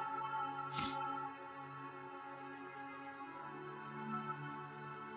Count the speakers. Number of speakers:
0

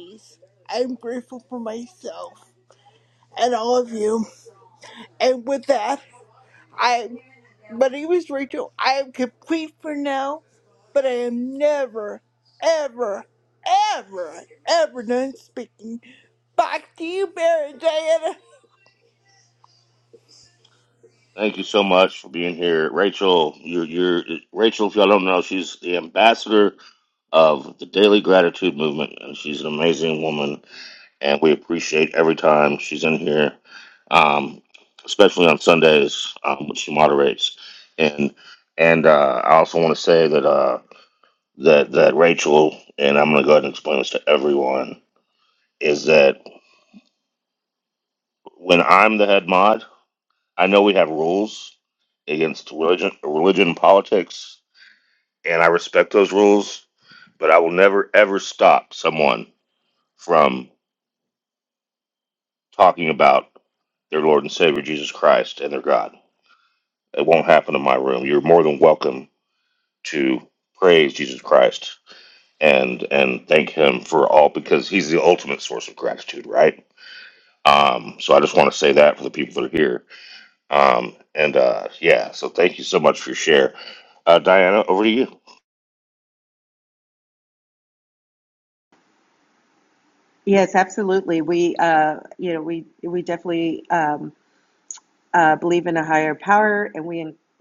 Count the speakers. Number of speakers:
3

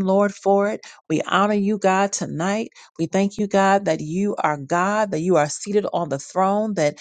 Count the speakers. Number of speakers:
1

